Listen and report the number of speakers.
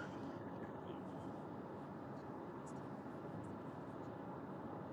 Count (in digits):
0